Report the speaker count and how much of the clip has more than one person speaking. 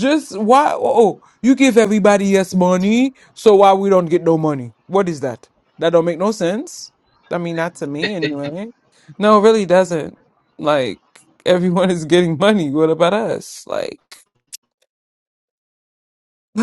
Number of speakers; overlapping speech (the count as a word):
one, no overlap